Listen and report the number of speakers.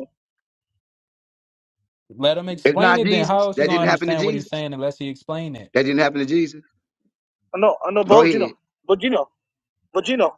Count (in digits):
3